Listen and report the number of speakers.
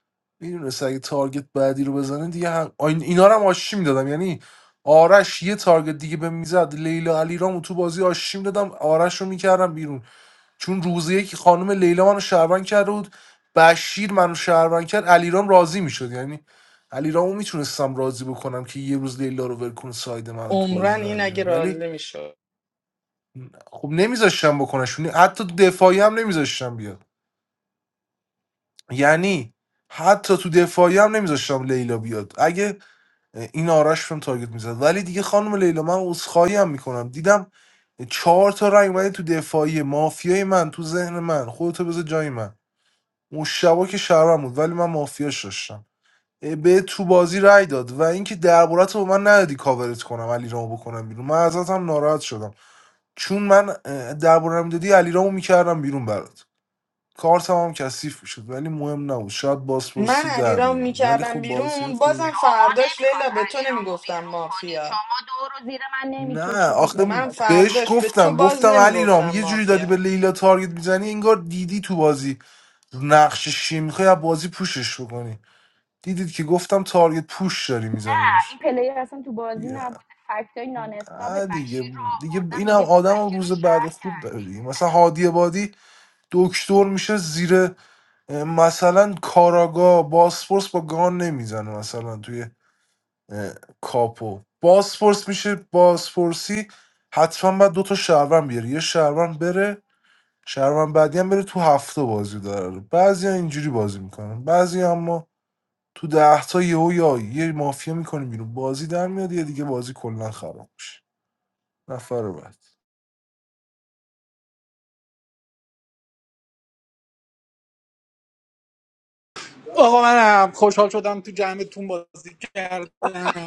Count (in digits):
4